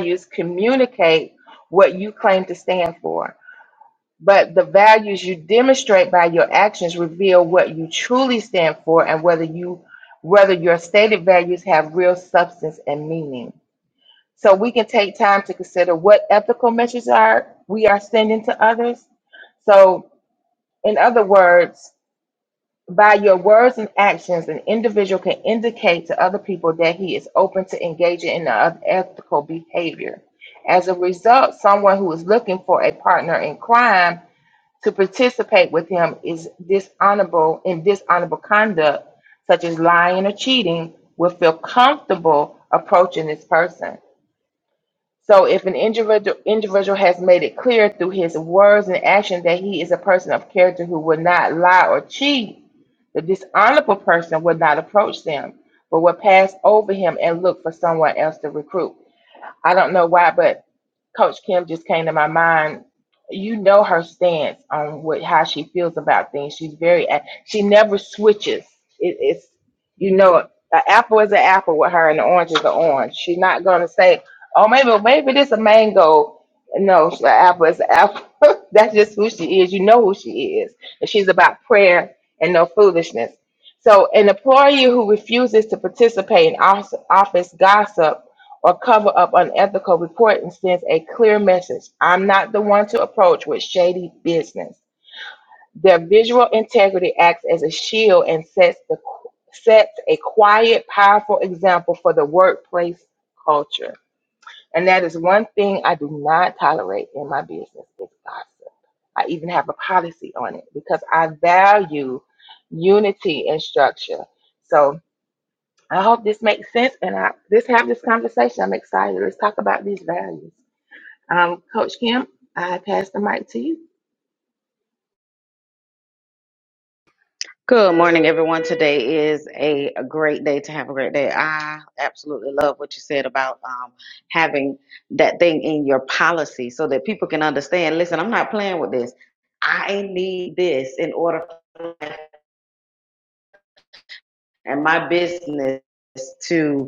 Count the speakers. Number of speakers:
two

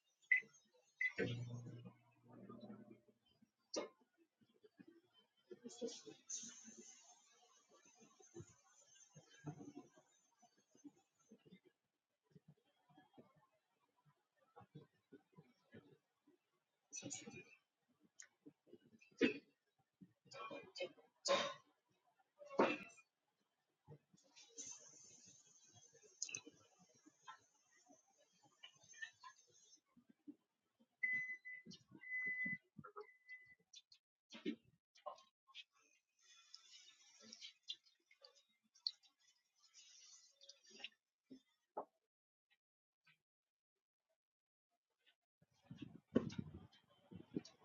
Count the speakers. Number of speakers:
zero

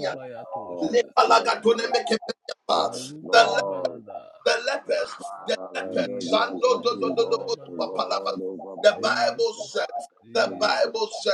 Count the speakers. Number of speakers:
three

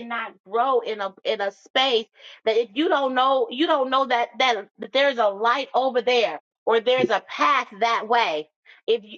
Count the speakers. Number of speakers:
one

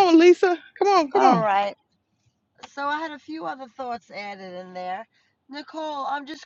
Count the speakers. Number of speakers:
two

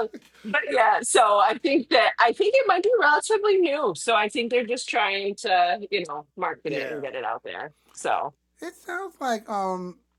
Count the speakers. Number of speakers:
two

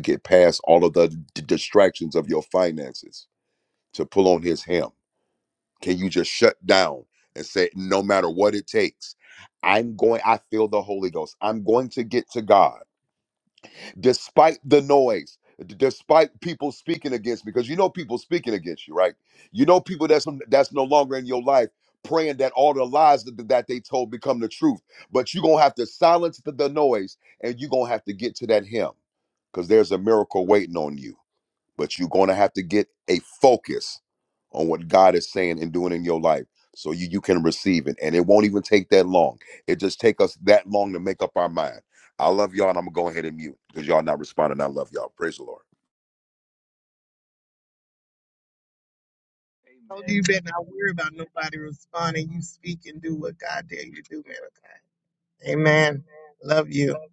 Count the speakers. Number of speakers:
two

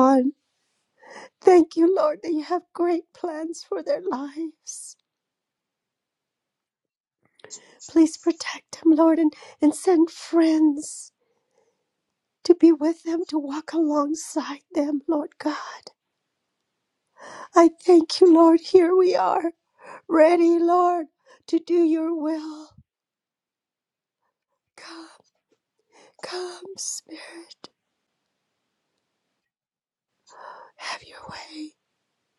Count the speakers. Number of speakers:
one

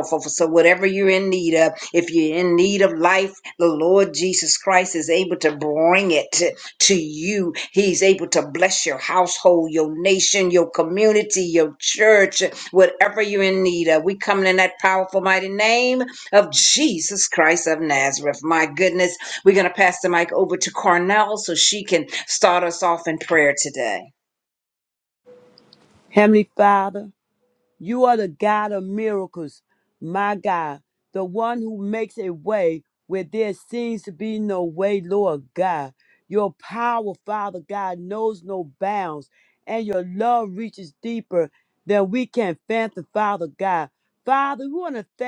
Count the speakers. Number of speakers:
two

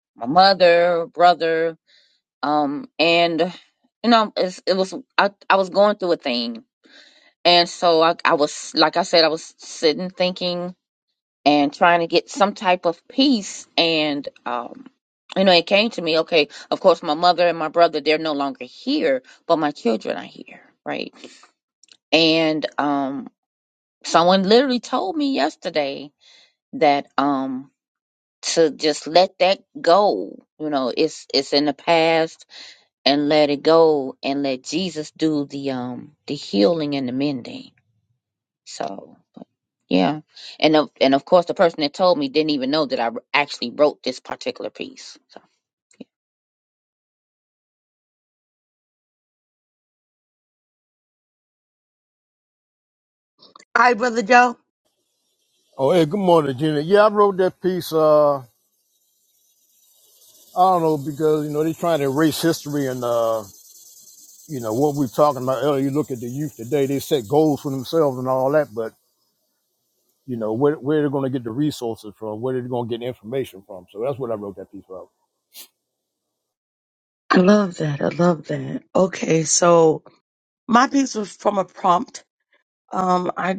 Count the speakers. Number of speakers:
three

